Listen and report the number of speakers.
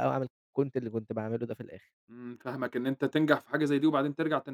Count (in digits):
2